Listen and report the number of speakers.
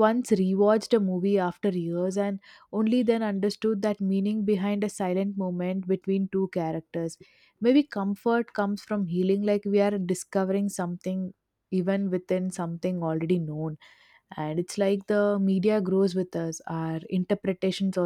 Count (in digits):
1